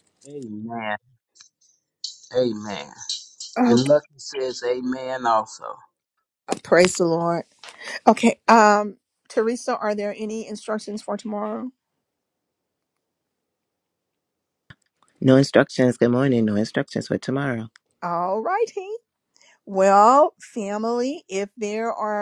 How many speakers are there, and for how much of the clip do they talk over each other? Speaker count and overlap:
3, about 1%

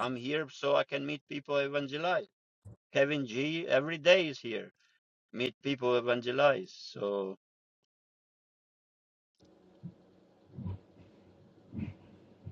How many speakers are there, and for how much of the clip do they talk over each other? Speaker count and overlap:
1, no overlap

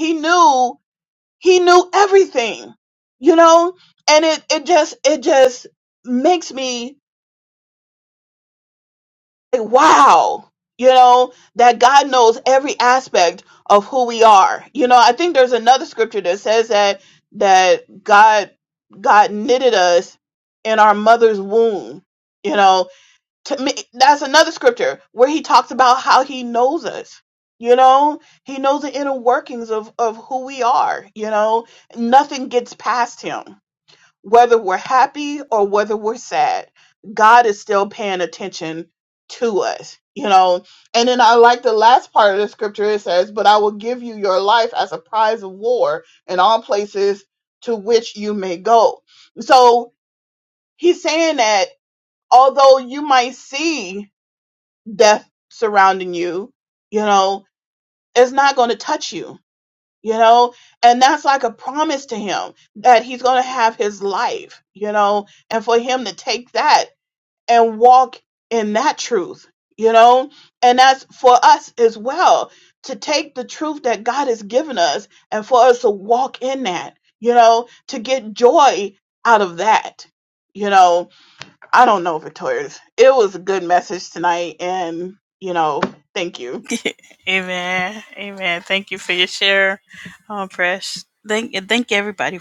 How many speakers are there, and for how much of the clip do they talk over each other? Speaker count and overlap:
2, no overlap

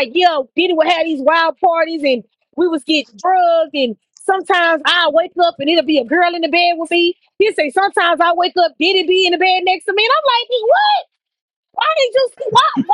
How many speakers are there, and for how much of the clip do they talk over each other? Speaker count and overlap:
1, no overlap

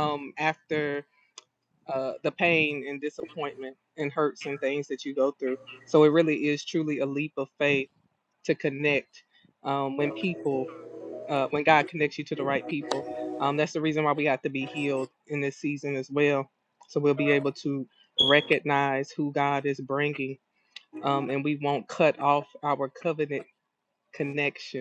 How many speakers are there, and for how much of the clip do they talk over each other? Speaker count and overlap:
1, no overlap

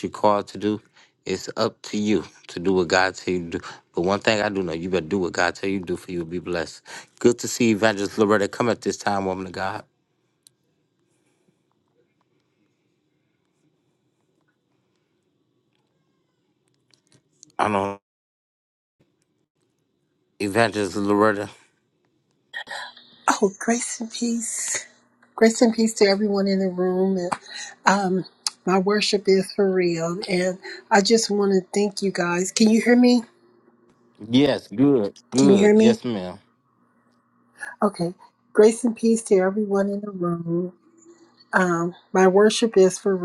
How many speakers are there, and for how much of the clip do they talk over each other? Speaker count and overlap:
2, about 1%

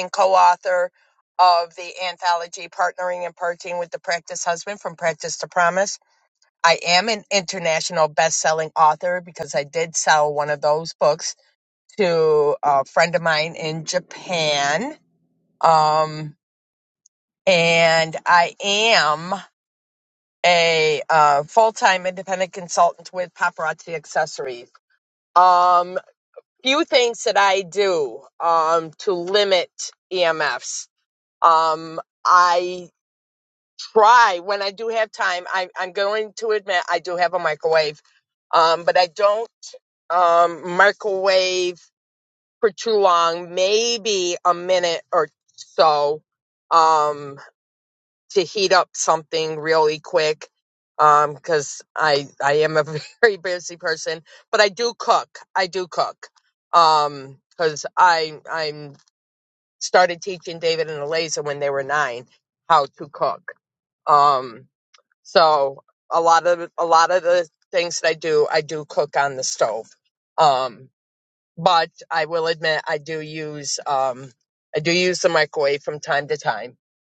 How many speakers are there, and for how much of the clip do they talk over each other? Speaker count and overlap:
1, no overlap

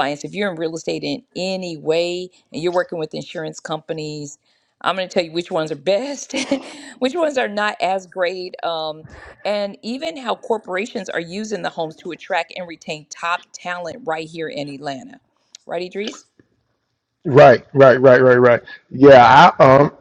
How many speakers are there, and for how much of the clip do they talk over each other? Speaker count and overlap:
2, no overlap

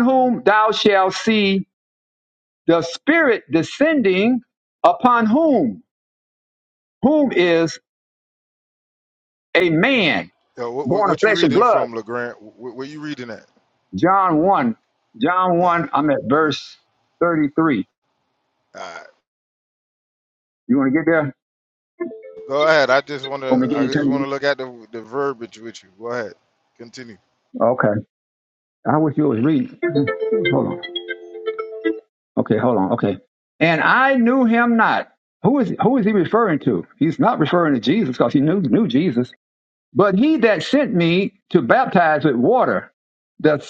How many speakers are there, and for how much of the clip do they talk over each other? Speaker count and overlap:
2, about 4%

